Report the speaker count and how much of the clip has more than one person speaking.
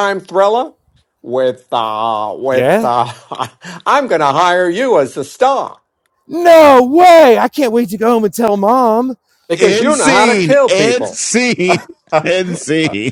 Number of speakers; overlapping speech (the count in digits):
3, about 15%